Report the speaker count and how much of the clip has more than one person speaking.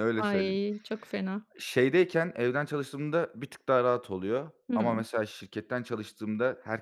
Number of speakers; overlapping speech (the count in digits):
2, about 11%